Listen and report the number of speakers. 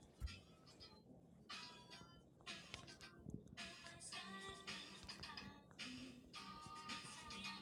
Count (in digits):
0